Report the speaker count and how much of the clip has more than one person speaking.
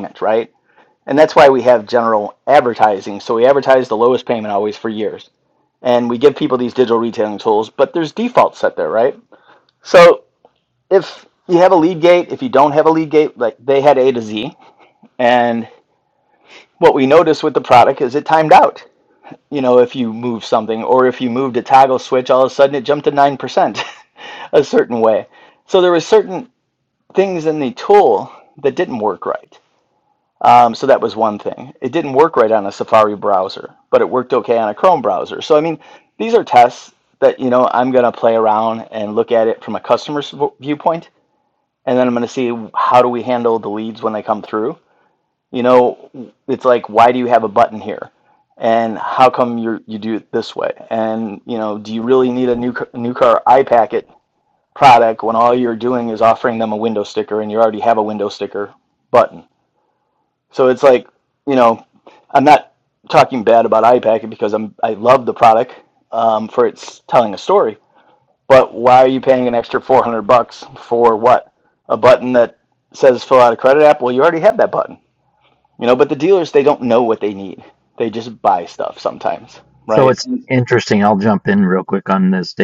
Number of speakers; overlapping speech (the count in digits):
2, under 1%